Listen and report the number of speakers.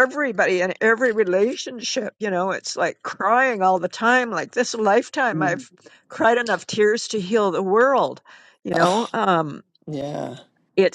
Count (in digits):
2